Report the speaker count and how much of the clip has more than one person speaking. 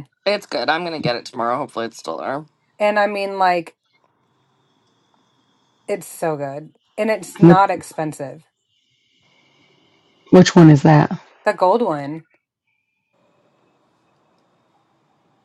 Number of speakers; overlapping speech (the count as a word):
three, about 1%